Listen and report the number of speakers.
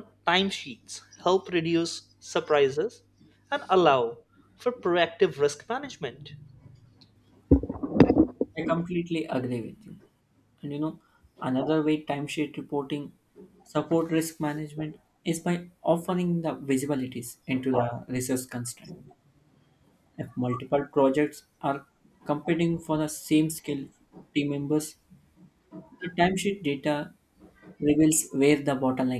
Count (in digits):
2